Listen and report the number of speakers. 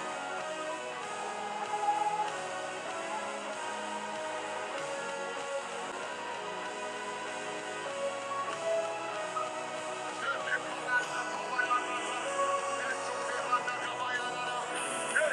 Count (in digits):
0